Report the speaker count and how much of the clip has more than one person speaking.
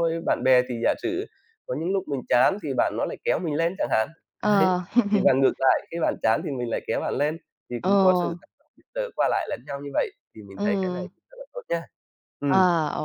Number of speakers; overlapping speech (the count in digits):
2, about 8%